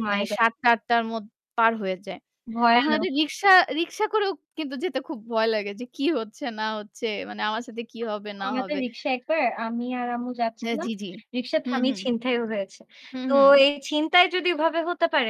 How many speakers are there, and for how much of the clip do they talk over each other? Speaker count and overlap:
two, about 13%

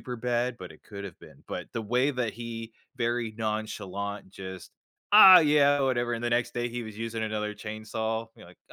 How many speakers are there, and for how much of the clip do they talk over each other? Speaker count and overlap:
one, no overlap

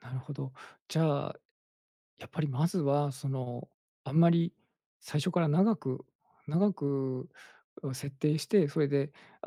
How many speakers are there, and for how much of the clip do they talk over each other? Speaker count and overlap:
one, no overlap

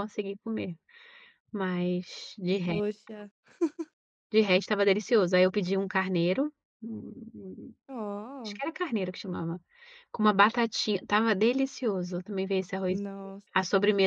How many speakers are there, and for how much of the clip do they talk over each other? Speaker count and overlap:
two, about 2%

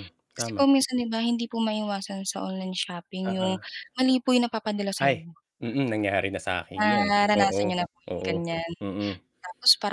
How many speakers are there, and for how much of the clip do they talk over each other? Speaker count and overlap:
two, about 20%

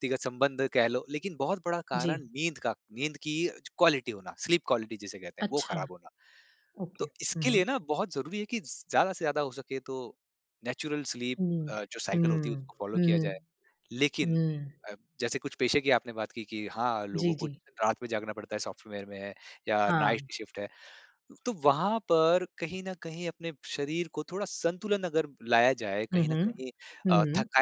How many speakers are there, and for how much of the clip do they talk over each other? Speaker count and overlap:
two, about 15%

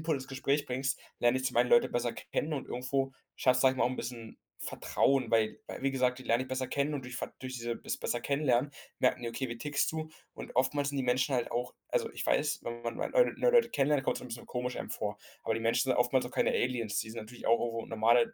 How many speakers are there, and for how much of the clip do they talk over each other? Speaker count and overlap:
one, no overlap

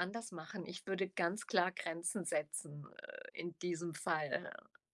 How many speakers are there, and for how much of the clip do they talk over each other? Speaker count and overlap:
one, no overlap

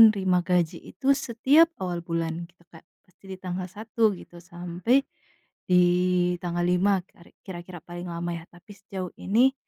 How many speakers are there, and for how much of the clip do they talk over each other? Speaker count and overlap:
one, no overlap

